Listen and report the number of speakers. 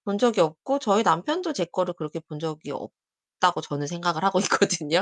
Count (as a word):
one